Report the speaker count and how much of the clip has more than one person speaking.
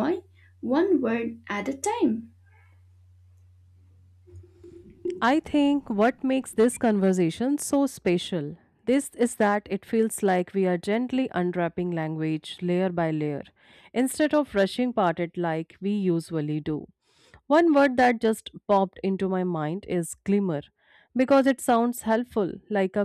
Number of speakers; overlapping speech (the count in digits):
2, no overlap